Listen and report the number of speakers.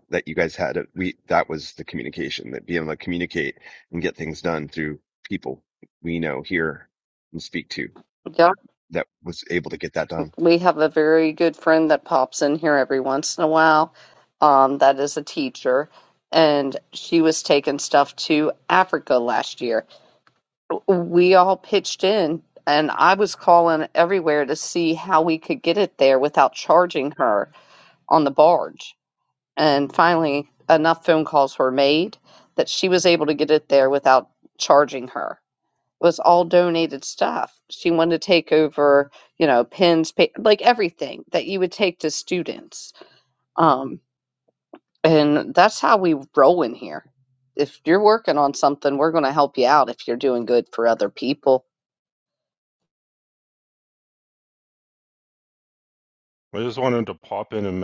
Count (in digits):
3